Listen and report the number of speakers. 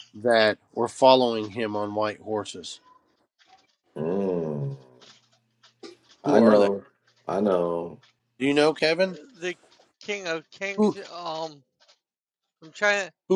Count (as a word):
three